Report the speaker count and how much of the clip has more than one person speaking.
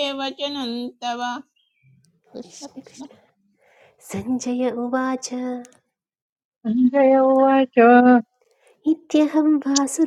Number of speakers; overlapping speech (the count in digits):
3, about 3%